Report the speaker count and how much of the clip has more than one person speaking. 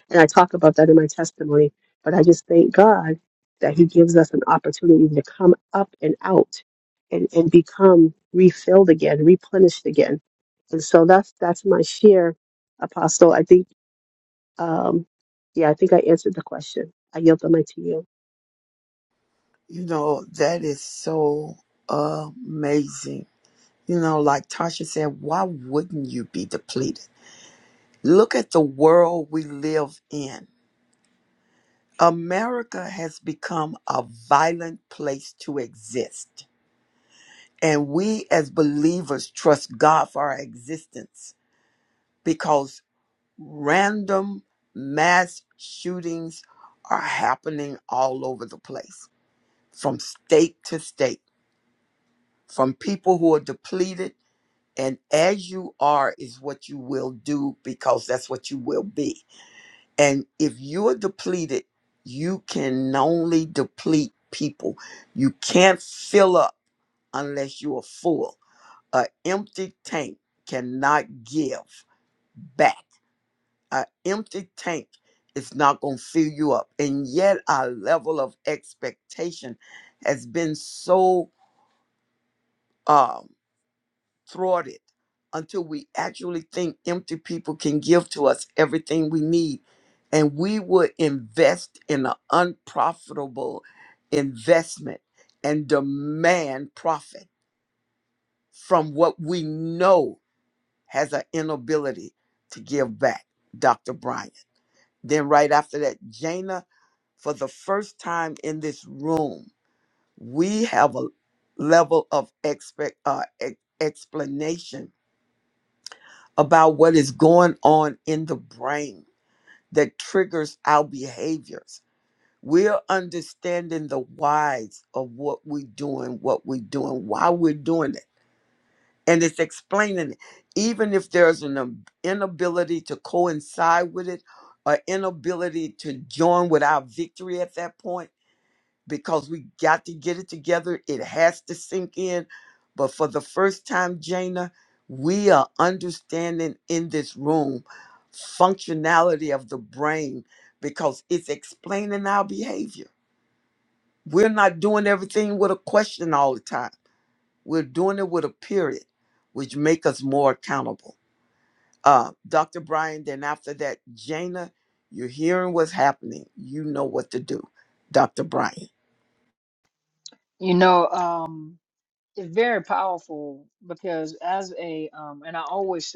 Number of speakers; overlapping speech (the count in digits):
3, no overlap